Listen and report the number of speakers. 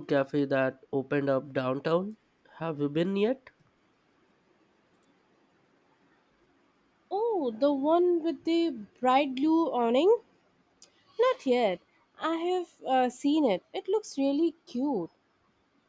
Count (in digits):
2